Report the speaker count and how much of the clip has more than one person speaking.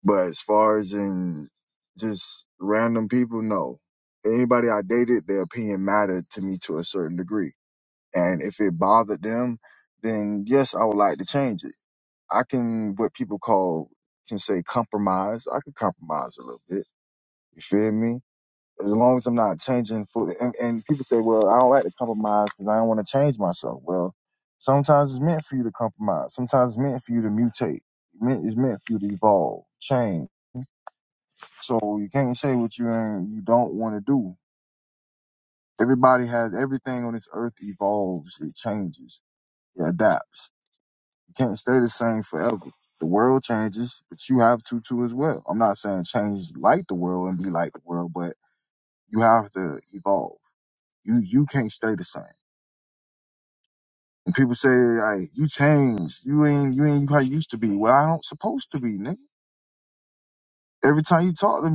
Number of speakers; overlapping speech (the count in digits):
1, no overlap